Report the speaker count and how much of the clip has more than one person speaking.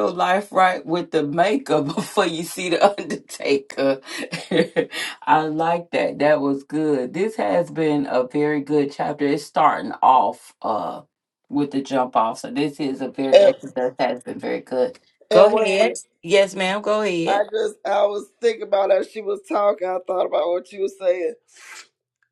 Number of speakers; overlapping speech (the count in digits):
2, about 4%